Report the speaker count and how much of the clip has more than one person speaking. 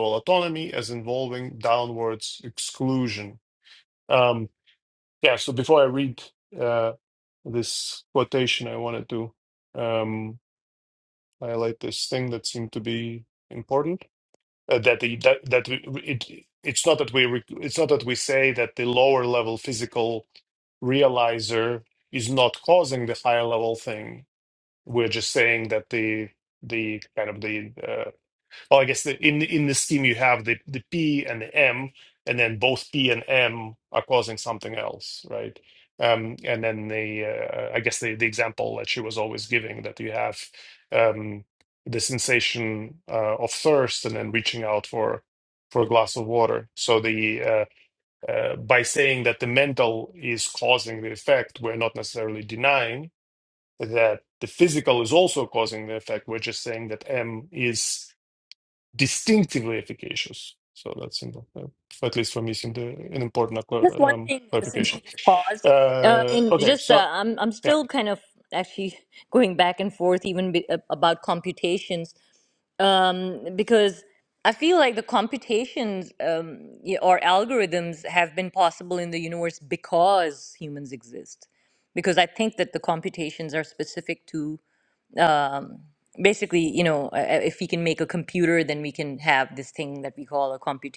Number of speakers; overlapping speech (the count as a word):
two, about 3%